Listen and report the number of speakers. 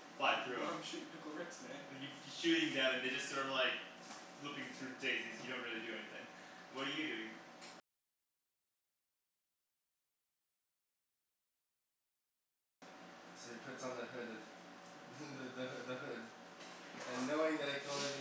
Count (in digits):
3